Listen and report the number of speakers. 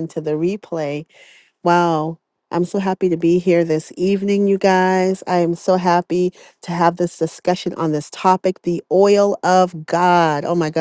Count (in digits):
1